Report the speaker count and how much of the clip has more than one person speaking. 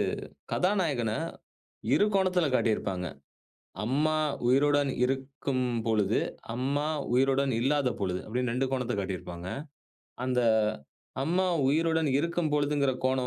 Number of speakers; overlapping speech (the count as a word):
one, no overlap